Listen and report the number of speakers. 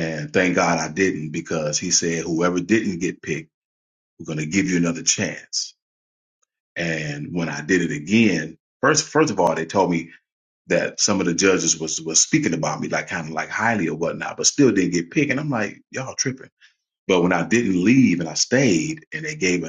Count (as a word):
one